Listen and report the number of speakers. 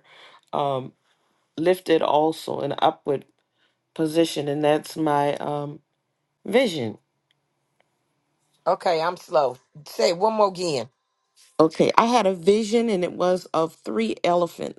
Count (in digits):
2